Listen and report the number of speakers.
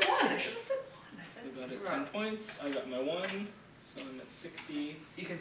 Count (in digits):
2